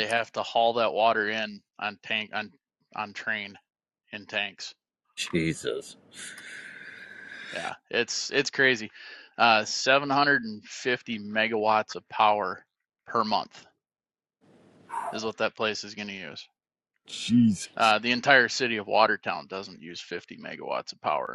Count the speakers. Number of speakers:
2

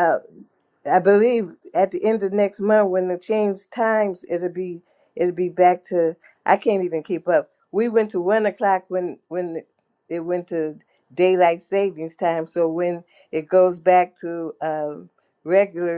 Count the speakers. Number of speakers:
1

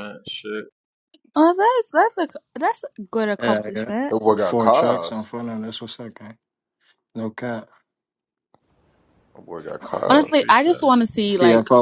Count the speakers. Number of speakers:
4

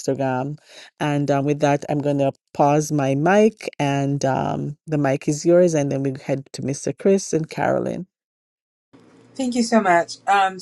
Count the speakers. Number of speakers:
2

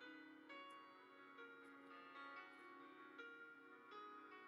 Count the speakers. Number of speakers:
0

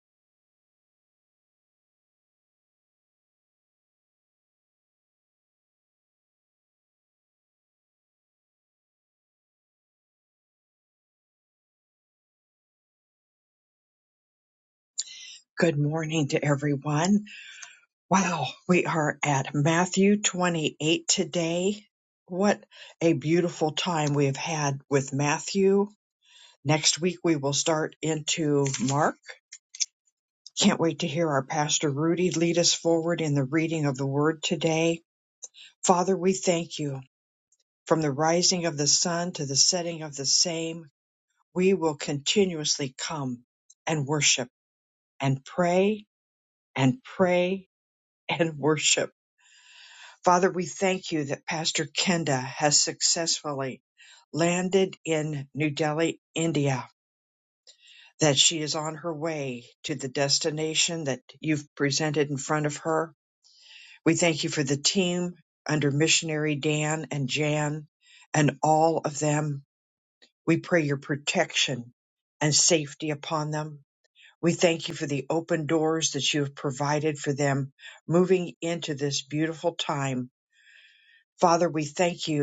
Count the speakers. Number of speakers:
1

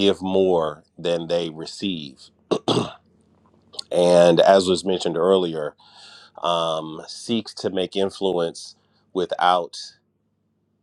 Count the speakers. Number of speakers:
1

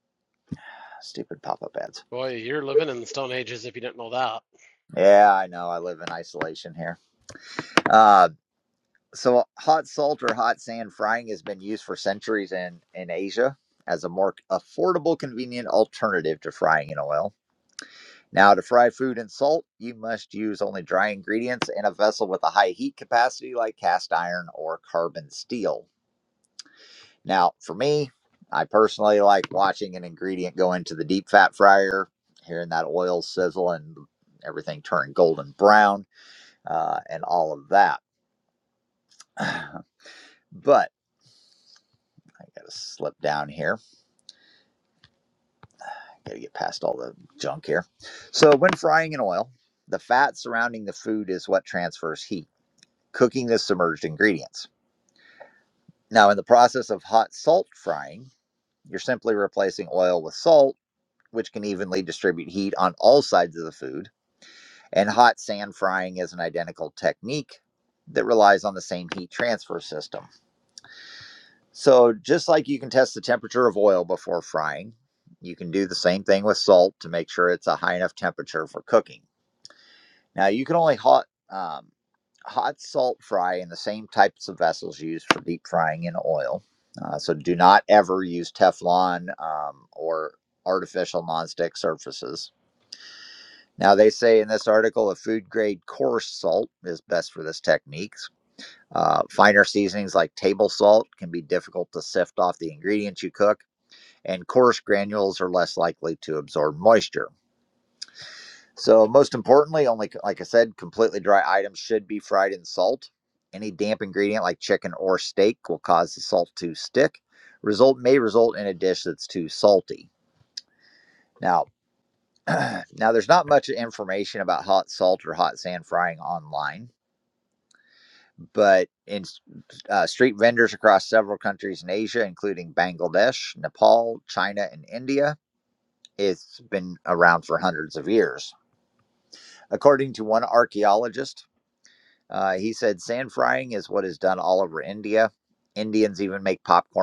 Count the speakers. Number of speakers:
2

